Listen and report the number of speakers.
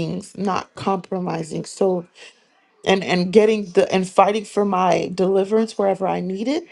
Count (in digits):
1